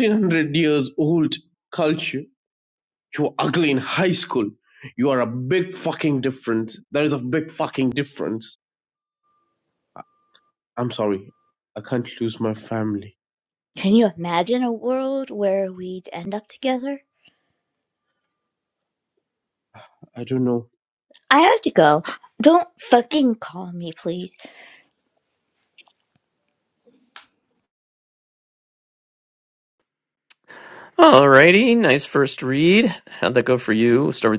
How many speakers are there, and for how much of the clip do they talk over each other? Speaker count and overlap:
3, no overlap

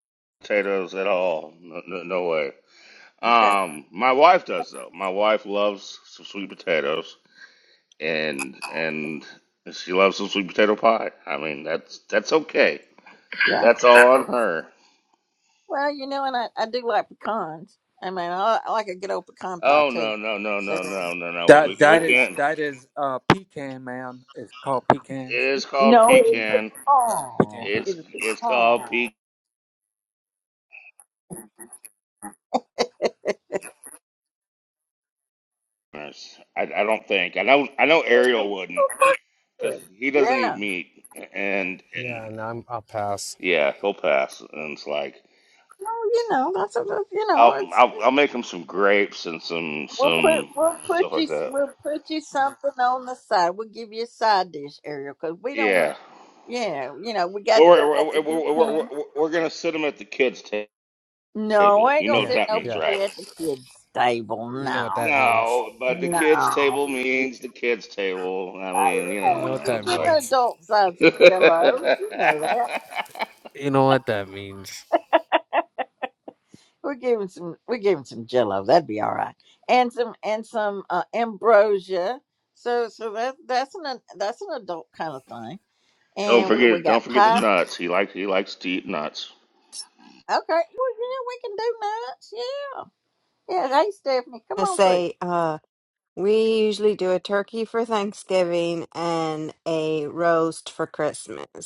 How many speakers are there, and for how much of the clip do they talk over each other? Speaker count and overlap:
5, about 15%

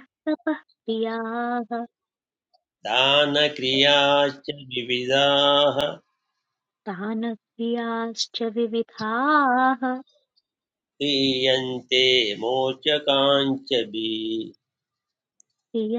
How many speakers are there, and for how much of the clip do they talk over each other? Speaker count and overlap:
2, no overlap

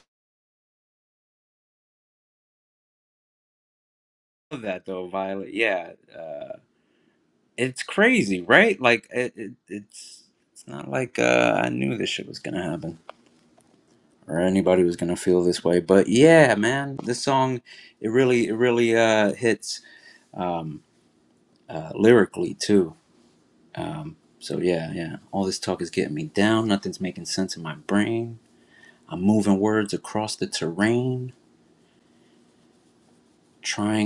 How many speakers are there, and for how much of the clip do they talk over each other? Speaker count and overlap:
1, no overlap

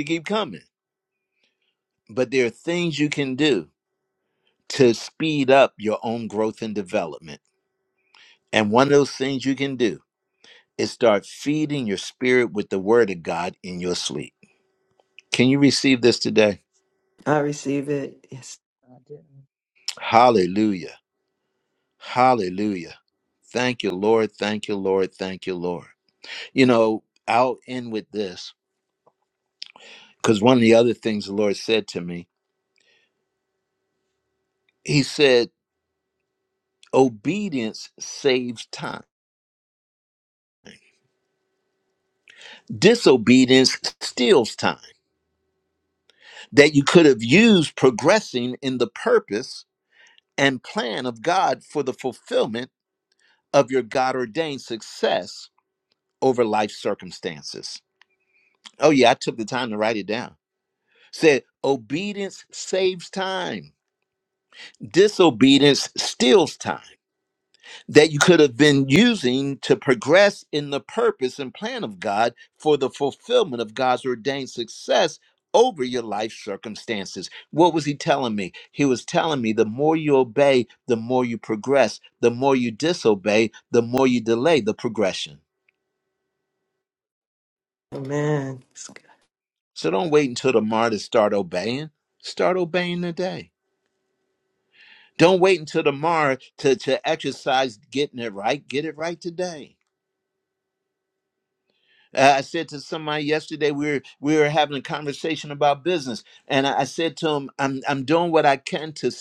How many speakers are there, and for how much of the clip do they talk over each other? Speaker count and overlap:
2, no overlap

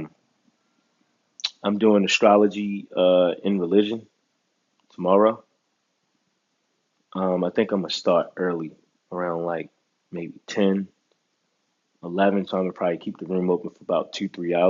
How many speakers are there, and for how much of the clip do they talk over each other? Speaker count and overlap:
1, no overlap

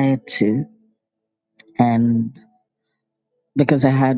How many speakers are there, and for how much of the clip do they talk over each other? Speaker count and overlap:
1, no overlap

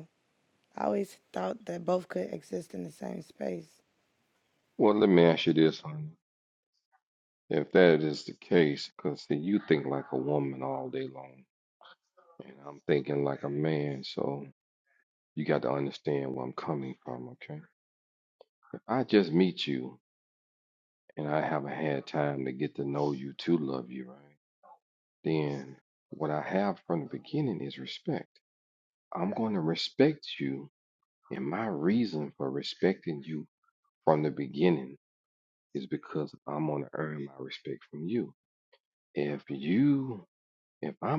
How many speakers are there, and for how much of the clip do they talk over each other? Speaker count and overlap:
2, no overlap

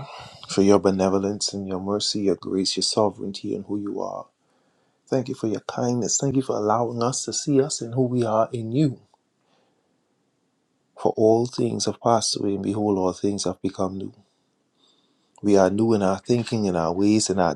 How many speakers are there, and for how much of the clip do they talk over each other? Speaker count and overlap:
1, no overlap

